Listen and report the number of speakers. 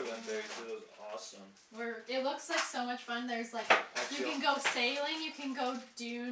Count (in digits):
2